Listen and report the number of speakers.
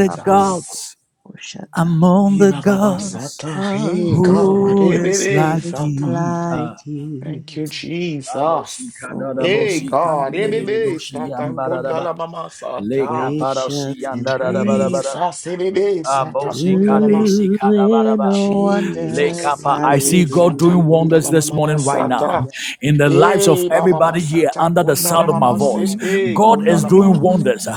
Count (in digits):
3